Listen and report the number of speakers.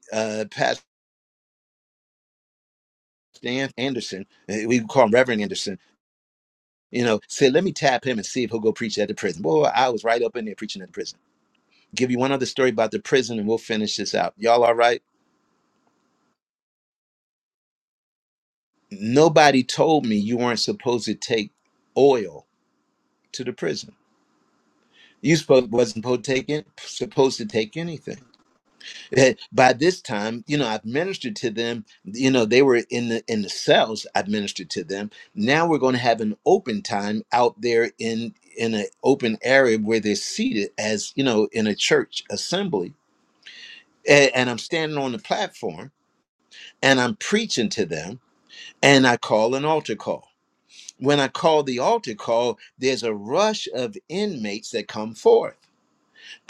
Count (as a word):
one